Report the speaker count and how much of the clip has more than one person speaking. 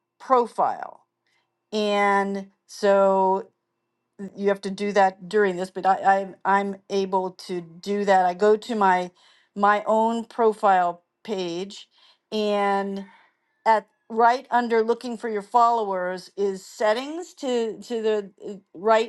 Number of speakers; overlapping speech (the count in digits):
1, no overlap